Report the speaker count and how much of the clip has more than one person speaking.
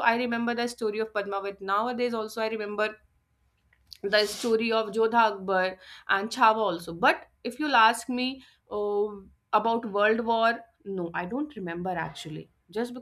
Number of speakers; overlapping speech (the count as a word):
one, no overlap